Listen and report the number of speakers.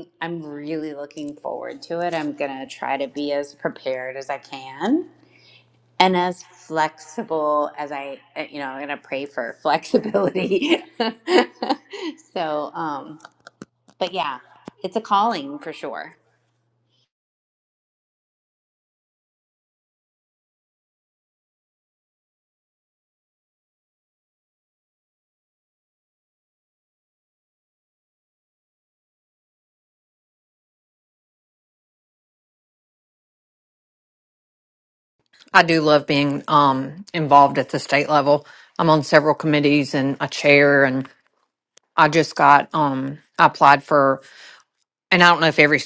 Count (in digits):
2